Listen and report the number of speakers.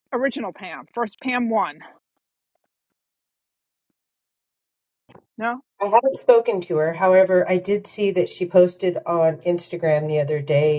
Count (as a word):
two